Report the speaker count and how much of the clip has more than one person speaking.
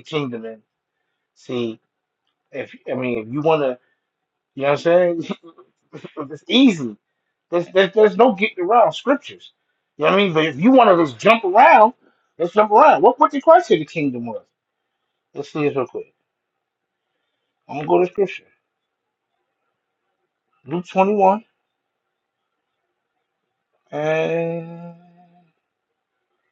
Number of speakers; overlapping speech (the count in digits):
1, no overlap